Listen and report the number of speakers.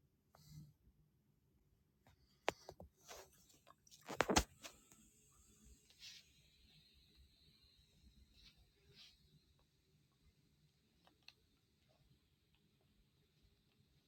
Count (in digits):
0